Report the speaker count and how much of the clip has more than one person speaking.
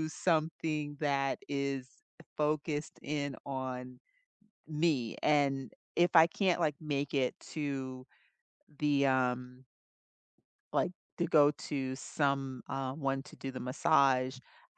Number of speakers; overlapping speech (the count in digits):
1, no overlap